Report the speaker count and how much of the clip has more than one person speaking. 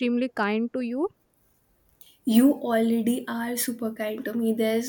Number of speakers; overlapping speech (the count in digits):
2, no overlap